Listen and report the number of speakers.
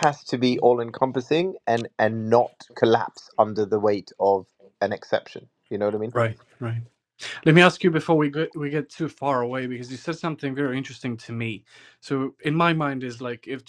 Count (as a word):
two